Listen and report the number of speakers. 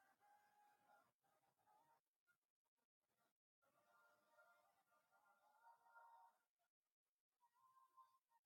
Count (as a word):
zero